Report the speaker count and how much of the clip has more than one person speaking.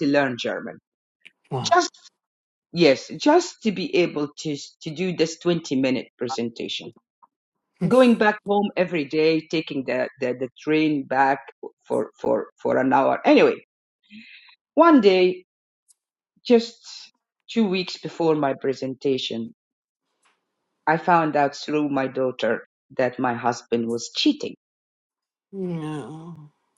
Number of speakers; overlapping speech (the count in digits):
2, about 1%